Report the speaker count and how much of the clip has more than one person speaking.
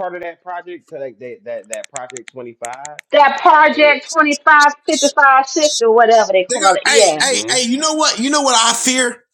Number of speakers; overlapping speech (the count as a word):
three, about 15%